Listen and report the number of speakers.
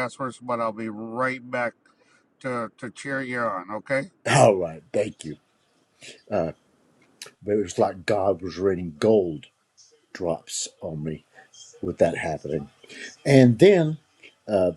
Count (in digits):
2